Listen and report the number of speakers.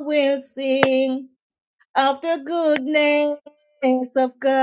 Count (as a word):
one